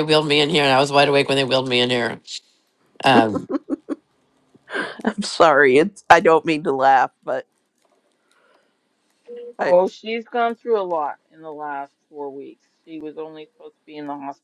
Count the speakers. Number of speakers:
three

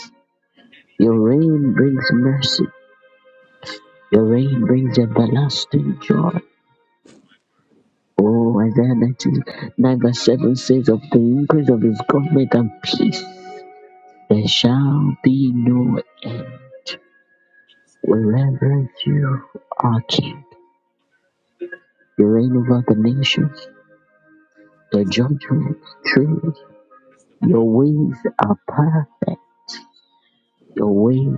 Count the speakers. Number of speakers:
one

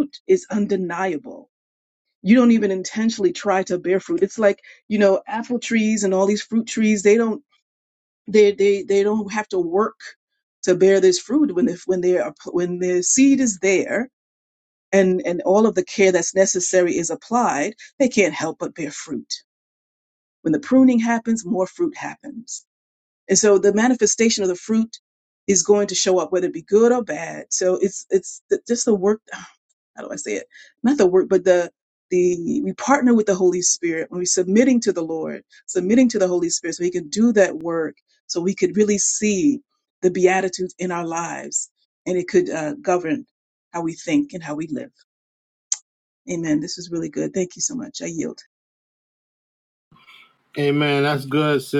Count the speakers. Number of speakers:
two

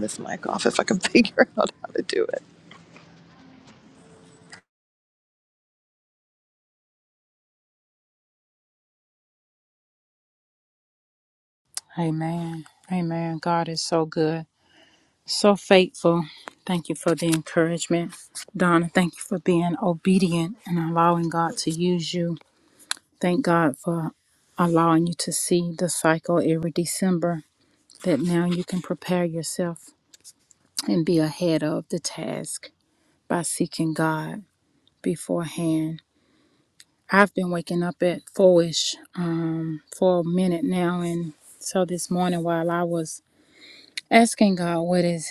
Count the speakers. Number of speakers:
two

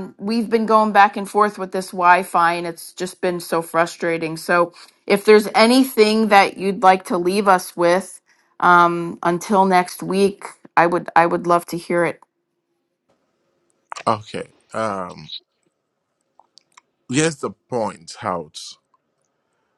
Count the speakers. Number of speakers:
two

